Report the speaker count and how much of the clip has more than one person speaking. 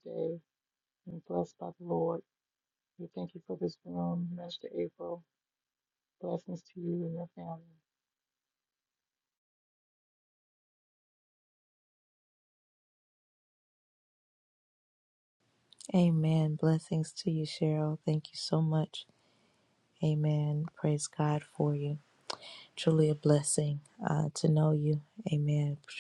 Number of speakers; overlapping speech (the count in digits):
2, no overlap